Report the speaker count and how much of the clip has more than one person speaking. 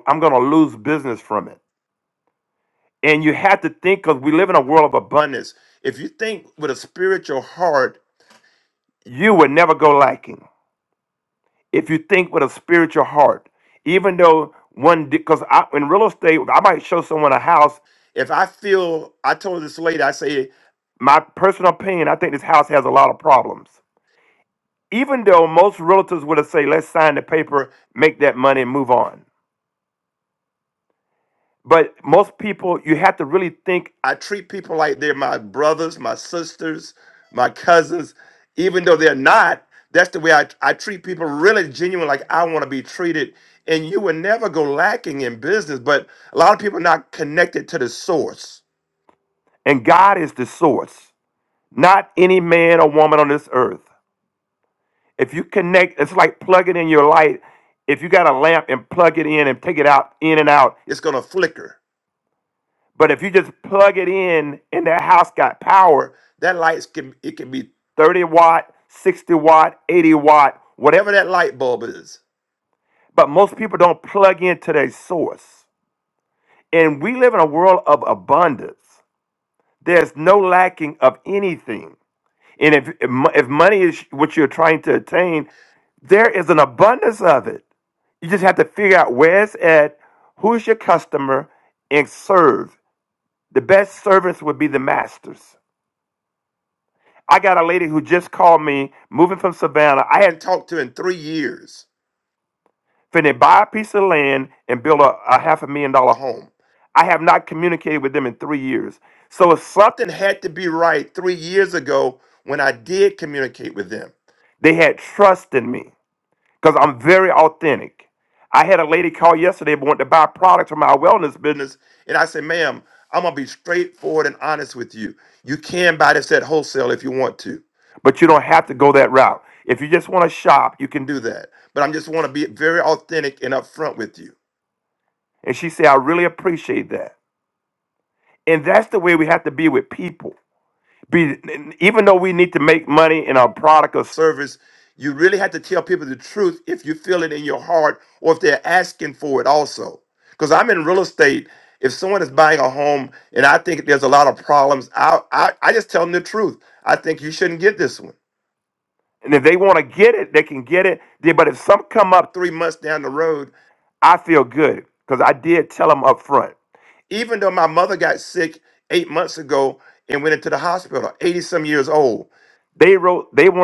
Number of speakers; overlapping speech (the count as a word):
one, no overlap